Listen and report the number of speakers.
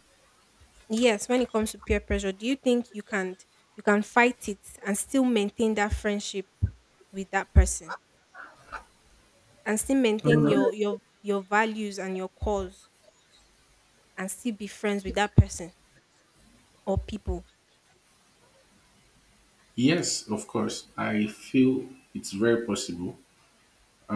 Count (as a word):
two